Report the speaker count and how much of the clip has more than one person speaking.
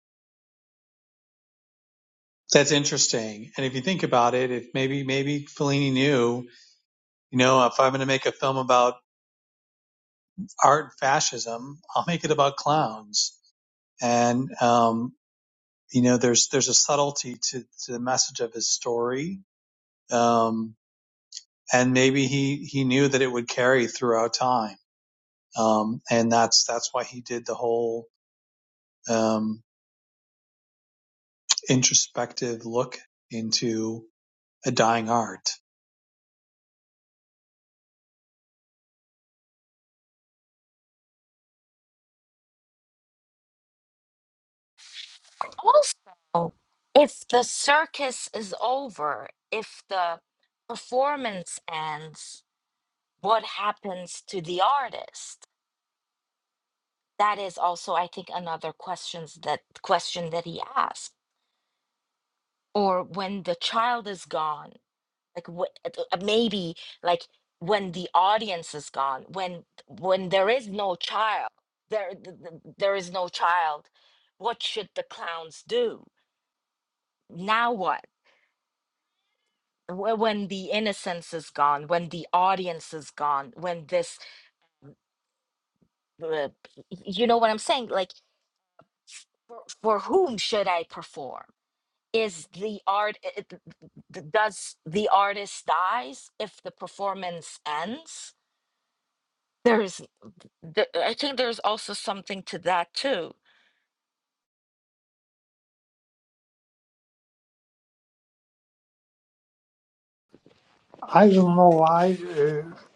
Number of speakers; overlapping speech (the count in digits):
3, no overlap